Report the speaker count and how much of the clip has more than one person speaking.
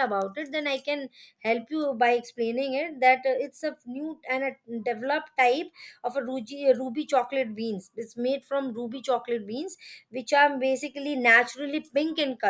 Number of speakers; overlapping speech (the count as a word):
one, no overlap